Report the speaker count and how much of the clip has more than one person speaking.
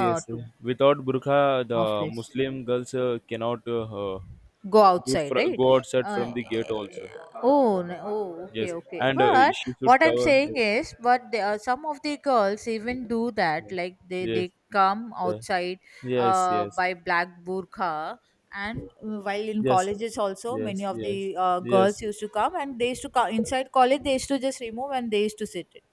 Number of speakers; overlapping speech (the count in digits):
2, about 22%